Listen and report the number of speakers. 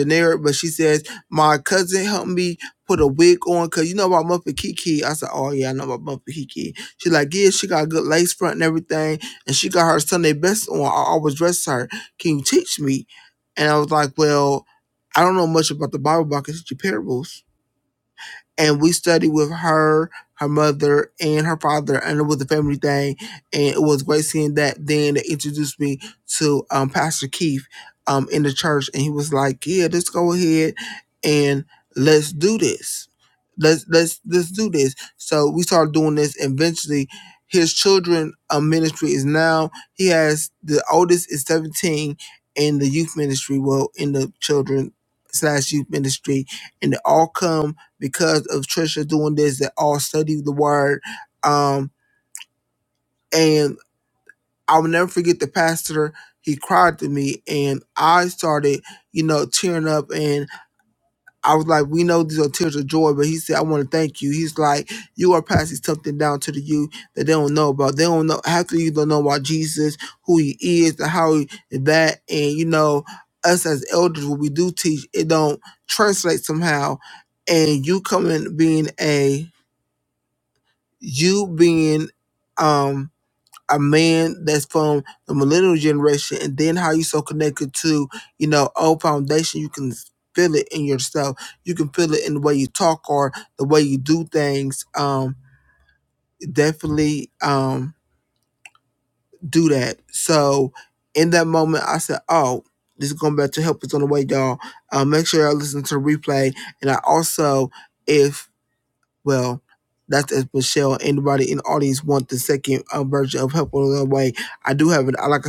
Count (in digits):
1